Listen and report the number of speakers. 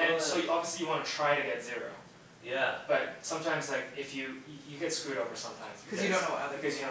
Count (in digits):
3